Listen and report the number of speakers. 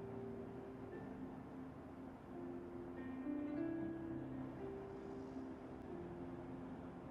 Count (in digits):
0